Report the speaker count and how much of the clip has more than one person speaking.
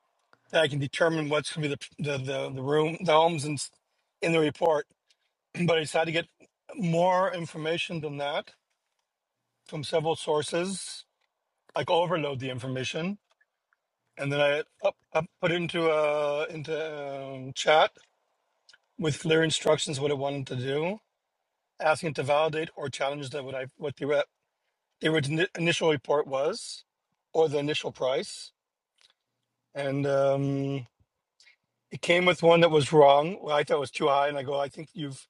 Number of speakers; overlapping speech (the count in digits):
1, no overlap